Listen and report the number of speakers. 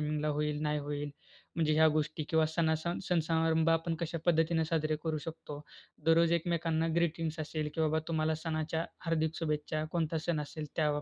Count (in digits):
1